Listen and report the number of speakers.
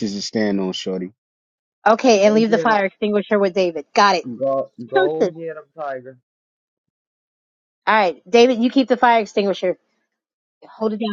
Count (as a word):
three